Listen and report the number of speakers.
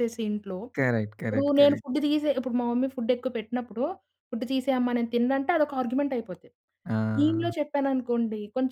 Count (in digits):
2